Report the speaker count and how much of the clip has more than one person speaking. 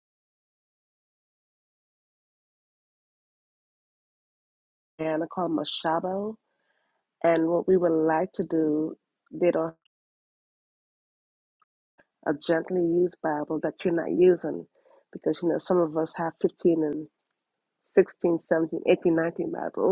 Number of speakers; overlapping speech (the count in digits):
1, no overlap